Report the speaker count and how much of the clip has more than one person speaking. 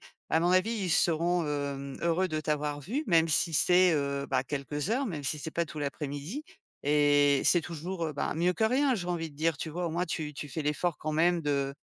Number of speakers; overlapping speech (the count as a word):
one, no overlap